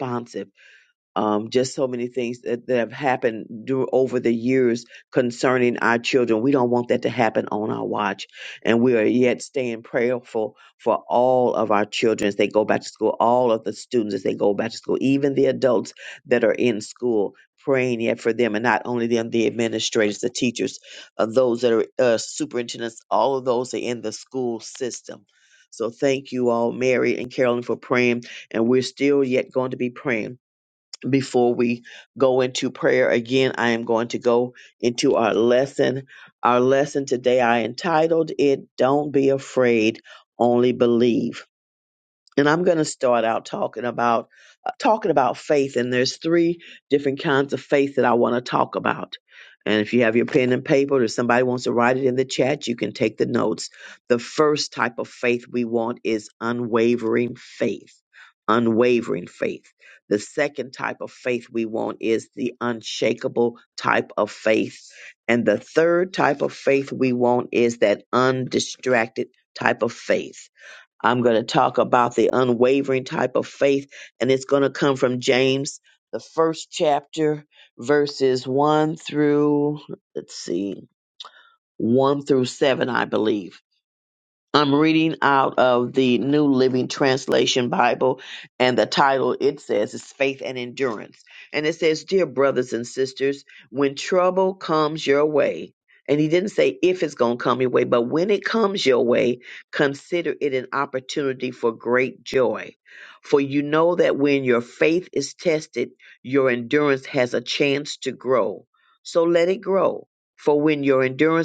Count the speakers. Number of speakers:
1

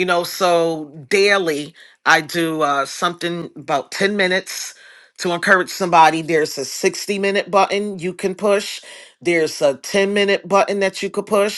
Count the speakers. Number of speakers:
1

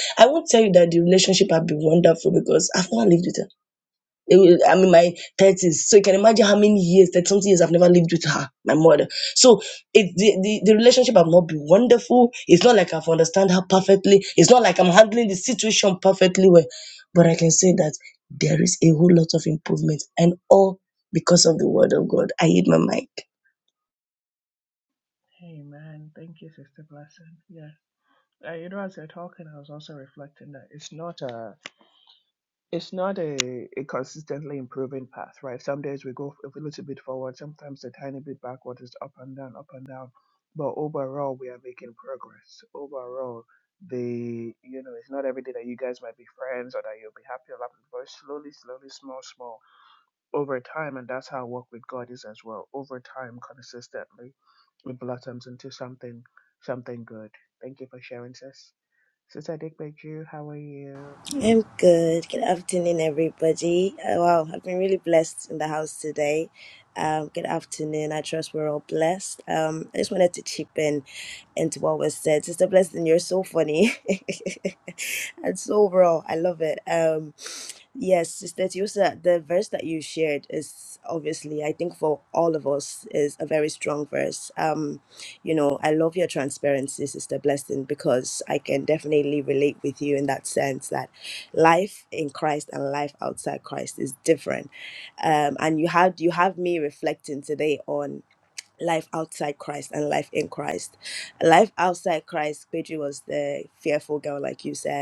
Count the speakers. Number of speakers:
3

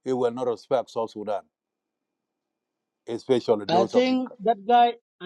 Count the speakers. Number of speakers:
2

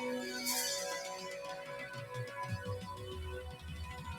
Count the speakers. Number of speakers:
0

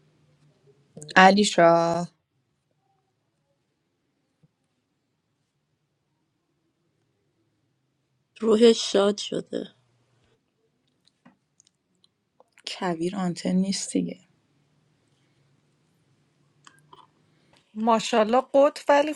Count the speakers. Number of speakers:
3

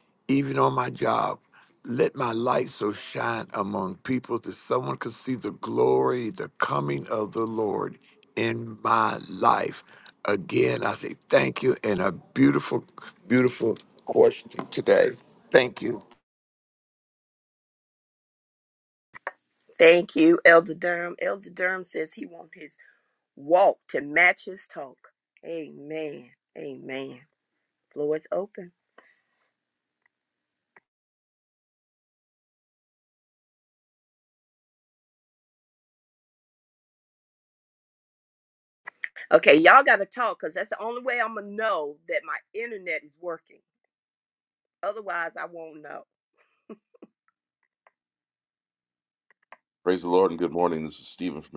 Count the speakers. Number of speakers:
3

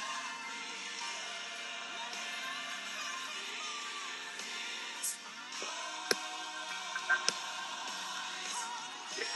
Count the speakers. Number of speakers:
0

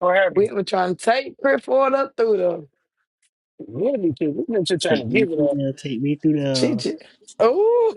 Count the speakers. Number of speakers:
3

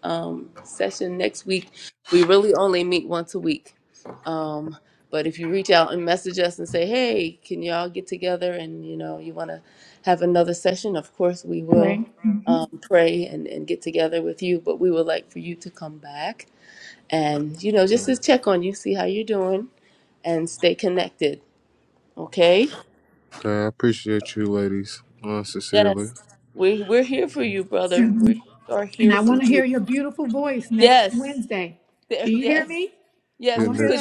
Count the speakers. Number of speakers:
3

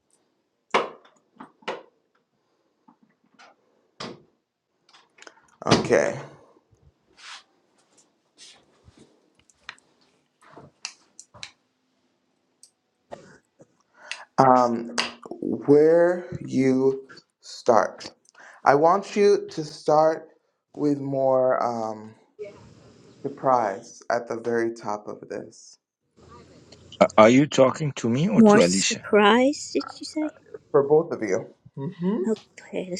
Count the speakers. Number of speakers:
3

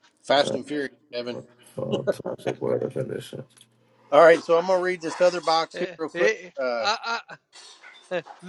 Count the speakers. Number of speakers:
3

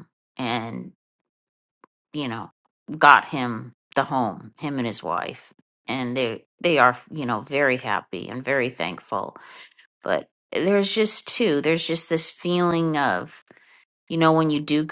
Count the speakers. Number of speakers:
1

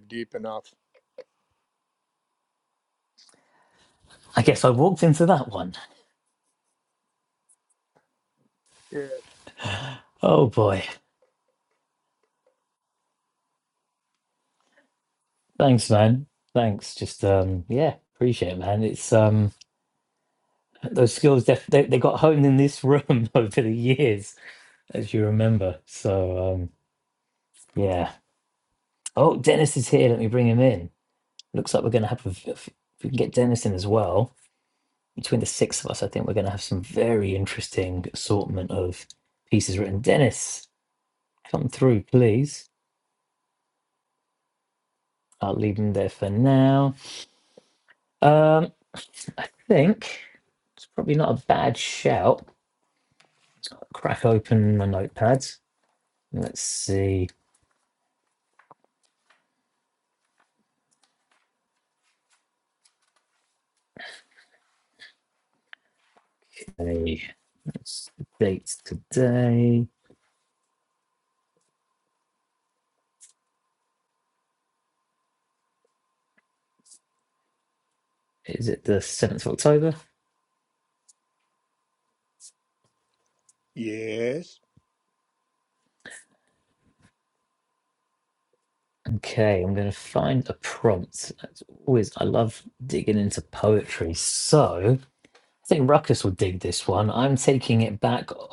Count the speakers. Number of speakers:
2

